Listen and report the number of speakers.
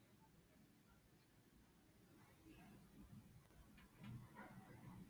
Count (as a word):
zero